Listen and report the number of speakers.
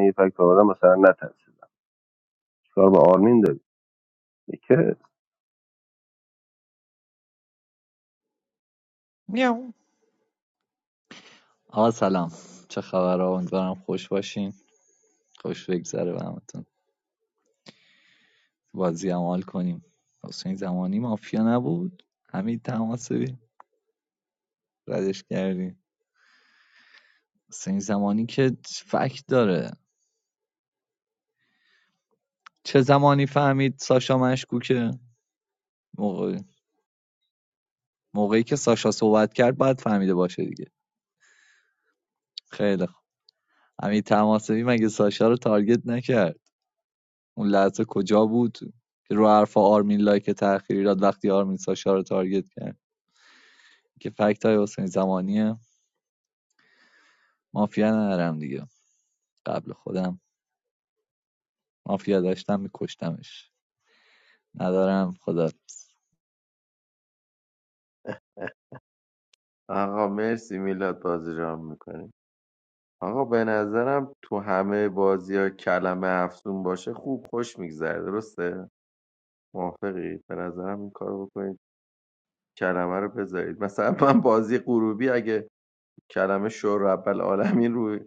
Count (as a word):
three